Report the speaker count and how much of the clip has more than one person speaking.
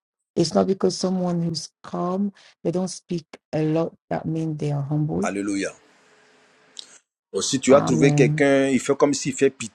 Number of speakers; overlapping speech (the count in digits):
2, about 8%